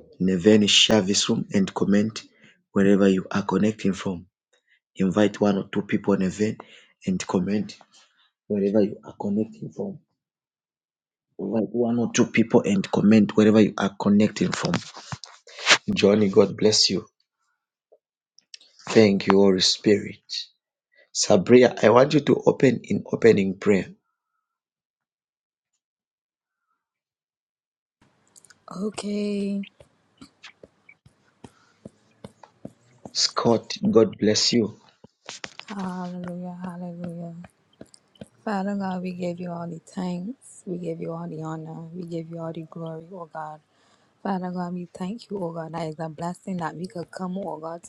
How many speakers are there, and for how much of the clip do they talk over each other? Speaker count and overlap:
two, no overlap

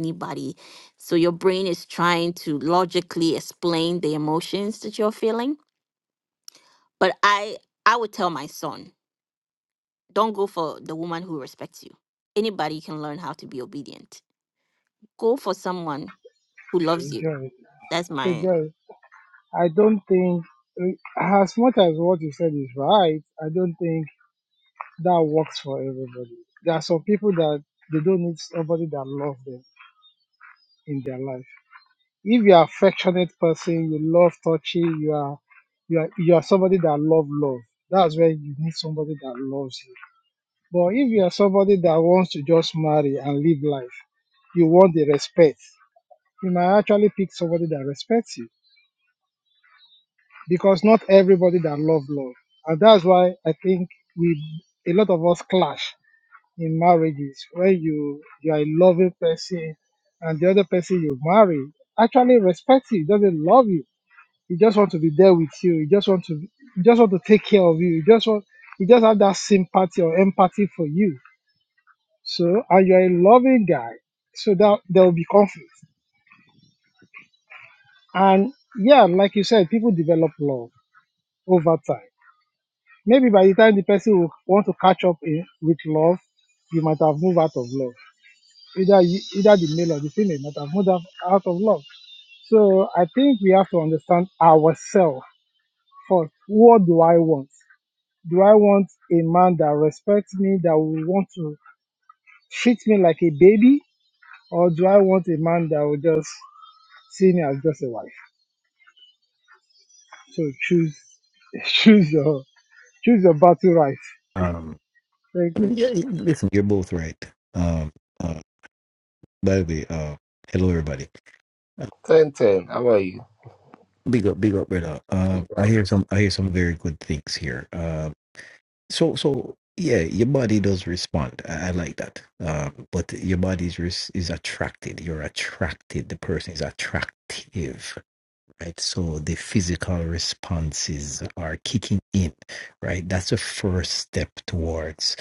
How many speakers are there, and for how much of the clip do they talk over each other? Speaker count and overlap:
four, about 1%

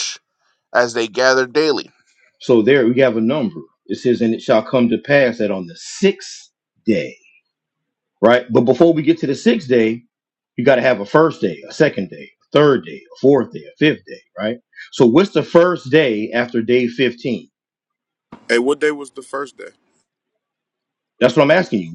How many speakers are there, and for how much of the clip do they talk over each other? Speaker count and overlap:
three, no overlap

